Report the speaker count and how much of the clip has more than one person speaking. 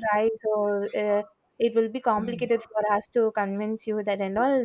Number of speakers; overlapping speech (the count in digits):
1, no overlap